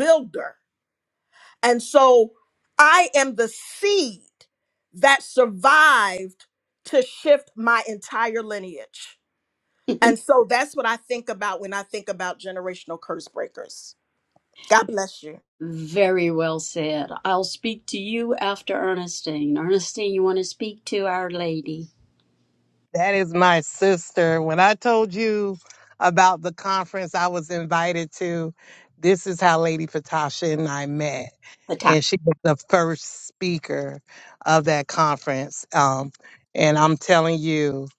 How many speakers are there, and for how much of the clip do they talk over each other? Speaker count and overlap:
three, no overlap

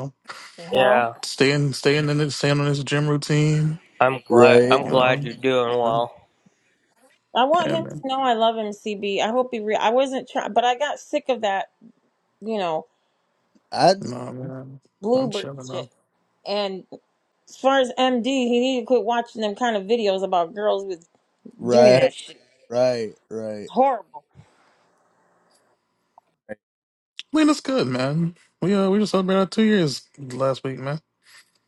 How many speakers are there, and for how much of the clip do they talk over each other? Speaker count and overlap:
four, about 10%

